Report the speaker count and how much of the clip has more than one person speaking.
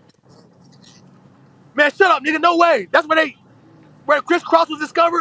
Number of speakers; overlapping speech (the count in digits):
1, no overlap